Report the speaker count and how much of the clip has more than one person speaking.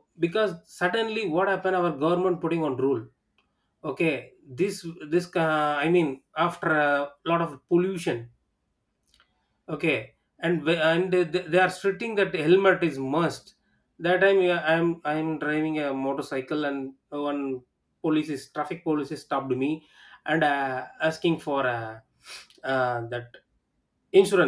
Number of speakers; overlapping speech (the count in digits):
1, no overlap